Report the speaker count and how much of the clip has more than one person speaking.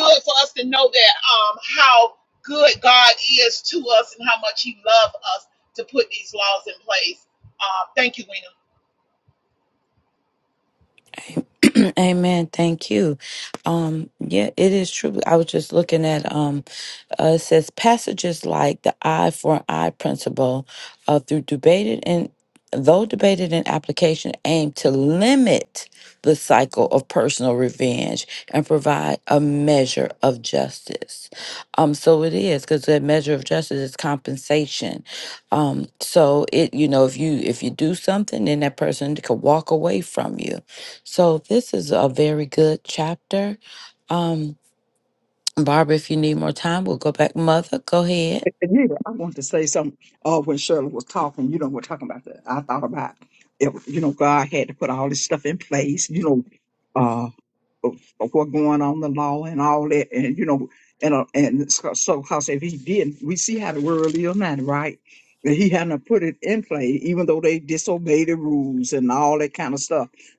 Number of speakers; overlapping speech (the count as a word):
three, no overlap